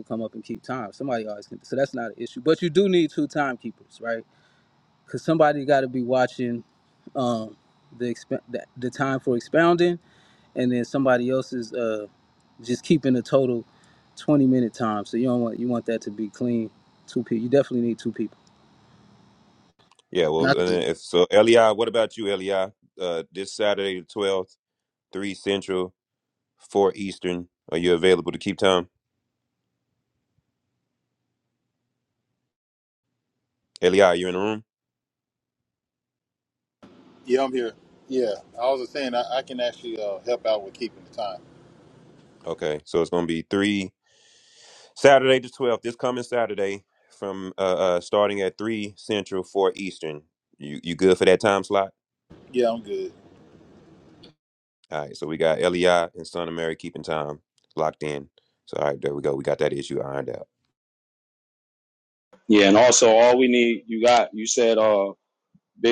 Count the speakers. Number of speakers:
four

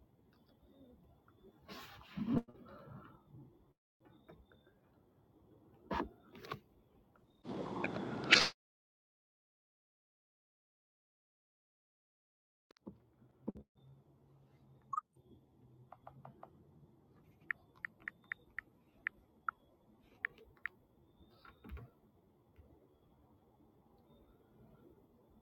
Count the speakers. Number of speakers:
zero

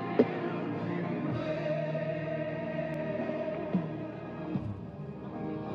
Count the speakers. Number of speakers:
zero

